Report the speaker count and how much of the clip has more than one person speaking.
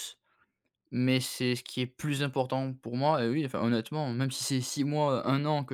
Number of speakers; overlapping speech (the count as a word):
one, no overlap